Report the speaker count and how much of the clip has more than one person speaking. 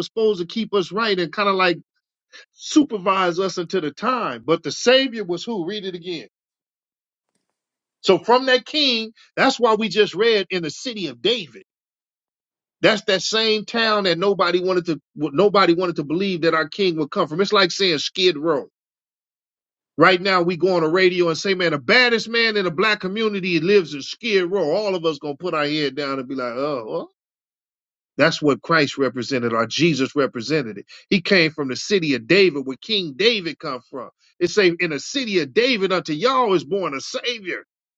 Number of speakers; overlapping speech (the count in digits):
1, no overlap